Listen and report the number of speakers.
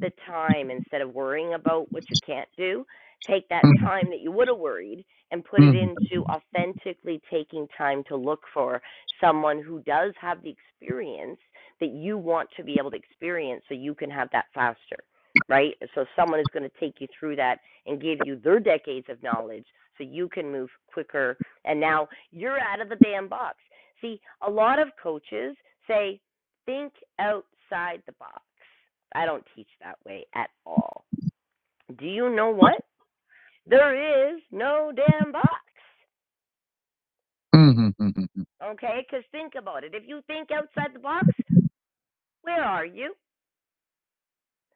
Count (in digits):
2